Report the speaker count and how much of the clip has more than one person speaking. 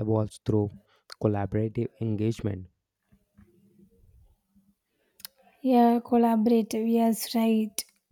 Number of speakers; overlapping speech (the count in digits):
2, no overlap